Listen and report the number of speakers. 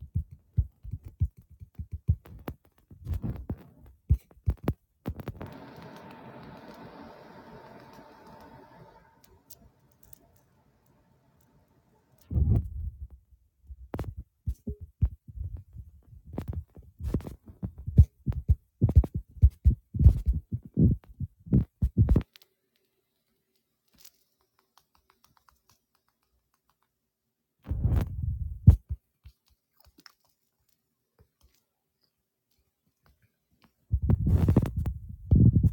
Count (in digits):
0